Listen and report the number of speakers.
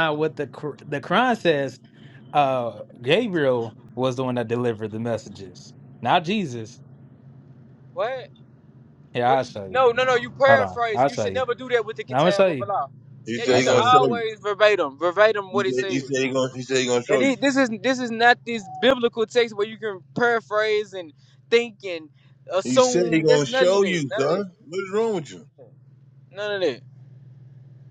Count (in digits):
3